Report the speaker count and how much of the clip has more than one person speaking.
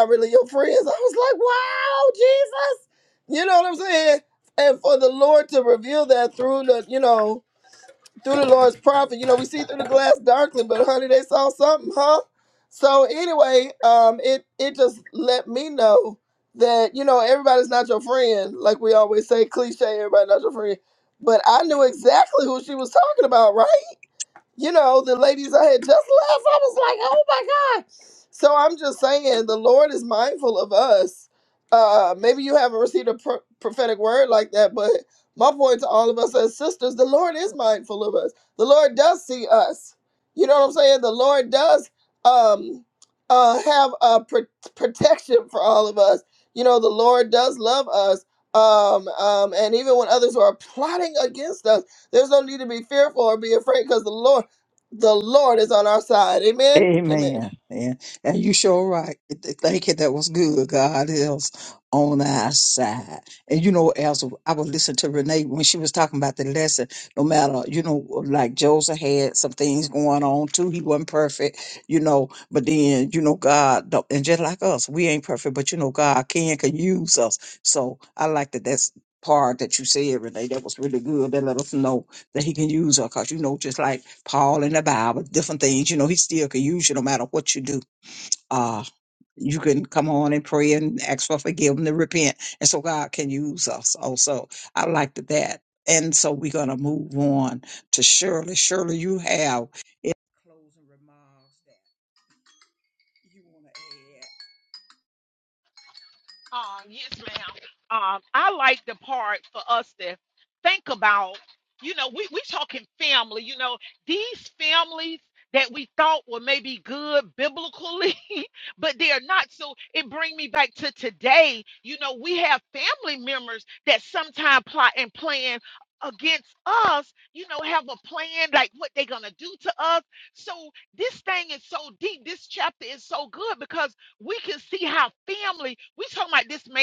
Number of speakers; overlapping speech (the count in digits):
3, under 1%